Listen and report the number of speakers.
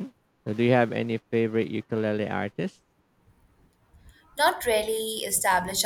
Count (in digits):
2